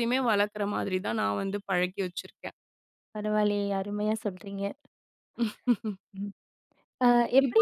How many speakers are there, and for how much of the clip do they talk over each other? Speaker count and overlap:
two, about 3%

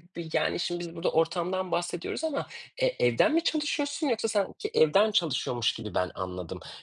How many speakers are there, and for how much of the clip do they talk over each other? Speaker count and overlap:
one, no overlap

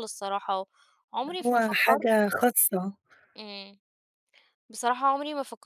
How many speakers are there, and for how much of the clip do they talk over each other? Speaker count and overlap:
two, about 11%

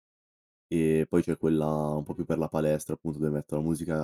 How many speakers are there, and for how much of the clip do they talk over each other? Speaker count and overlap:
one, no overlap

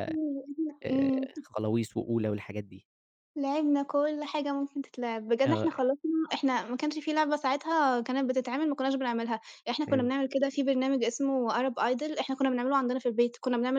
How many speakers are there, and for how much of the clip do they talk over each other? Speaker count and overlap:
two, about 7%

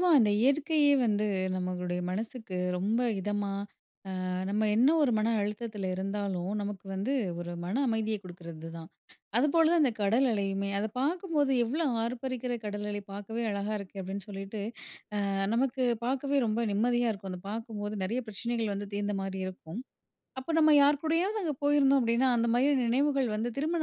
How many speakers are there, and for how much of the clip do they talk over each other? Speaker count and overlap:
one, no overlap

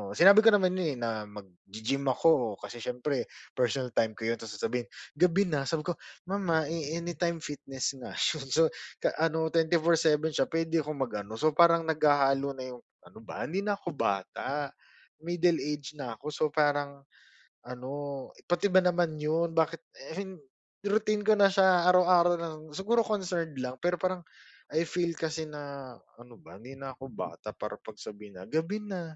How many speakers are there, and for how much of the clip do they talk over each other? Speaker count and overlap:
one, no overlap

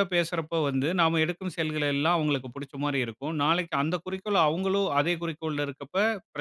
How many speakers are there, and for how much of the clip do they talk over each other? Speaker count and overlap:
one, no overlap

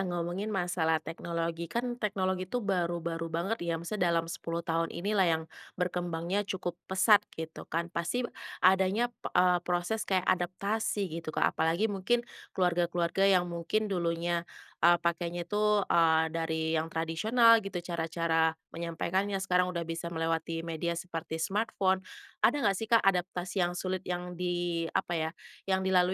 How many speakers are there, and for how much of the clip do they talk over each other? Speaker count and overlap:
one, no overlap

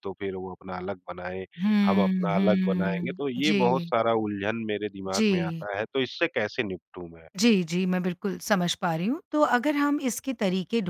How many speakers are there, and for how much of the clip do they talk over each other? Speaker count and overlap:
two, about 23%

